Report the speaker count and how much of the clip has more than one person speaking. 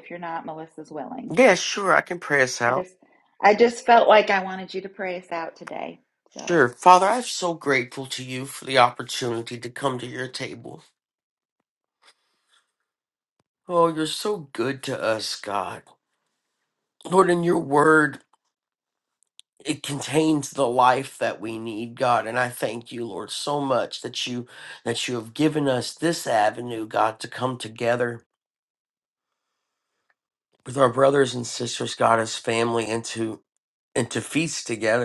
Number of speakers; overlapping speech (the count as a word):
two, about 1%